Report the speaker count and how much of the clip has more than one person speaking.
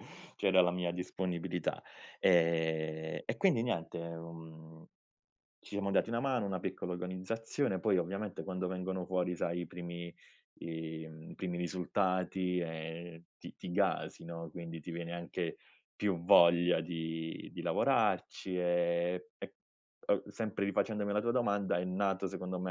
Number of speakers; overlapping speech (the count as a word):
one, no overlap